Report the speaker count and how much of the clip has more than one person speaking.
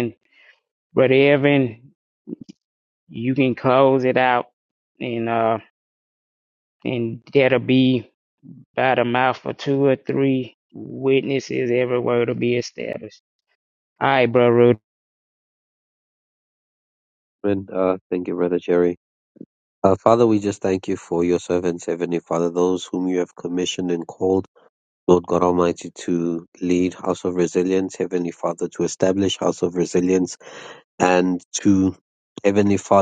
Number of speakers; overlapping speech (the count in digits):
2, no overlap